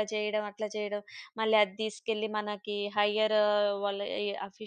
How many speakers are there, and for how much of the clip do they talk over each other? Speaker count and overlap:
1, no overlap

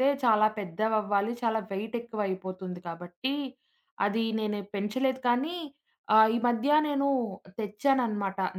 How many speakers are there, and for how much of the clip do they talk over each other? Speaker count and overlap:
1, no overlap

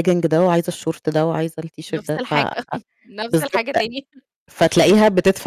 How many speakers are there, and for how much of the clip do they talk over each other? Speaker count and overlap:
2, about 14%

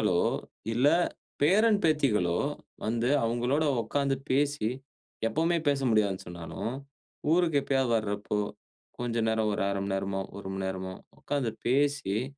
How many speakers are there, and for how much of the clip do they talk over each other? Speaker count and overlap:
1, no overlap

